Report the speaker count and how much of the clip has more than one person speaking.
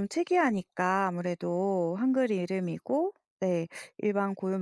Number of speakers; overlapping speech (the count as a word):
one, no overlap